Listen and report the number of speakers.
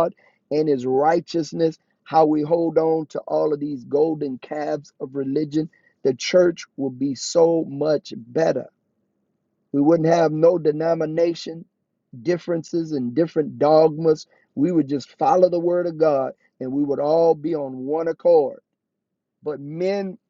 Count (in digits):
1